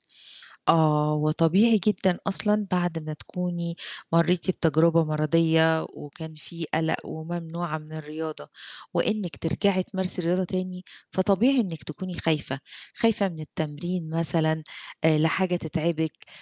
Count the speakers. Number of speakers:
1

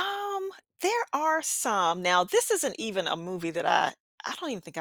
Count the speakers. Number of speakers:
1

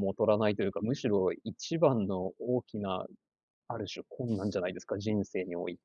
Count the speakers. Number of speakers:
1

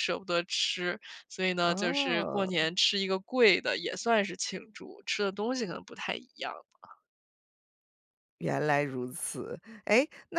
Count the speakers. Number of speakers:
2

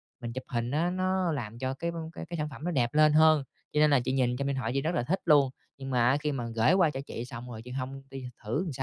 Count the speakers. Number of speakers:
1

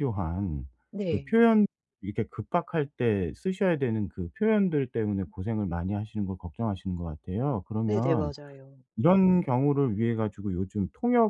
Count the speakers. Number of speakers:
2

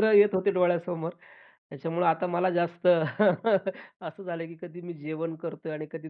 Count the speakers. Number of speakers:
1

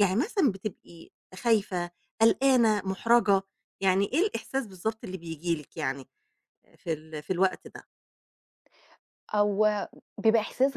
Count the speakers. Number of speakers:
2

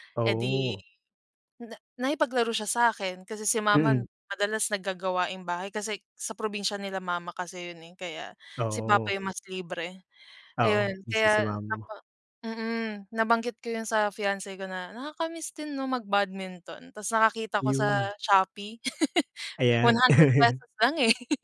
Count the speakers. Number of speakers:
2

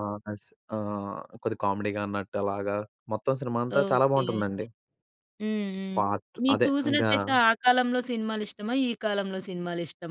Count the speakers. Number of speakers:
2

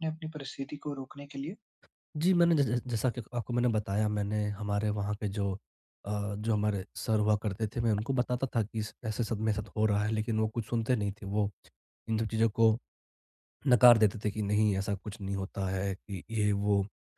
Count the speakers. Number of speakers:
2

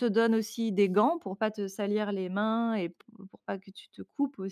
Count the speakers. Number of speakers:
1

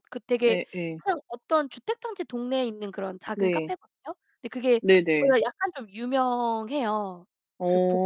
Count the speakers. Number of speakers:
2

